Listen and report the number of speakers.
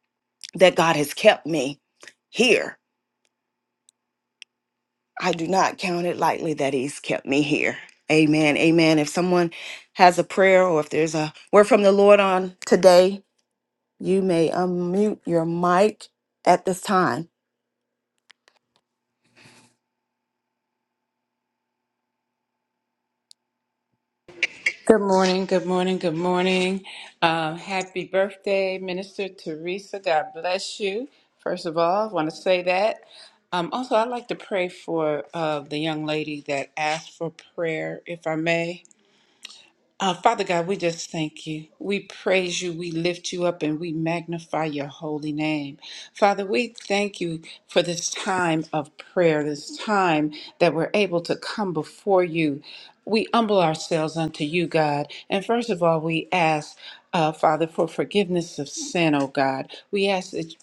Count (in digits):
2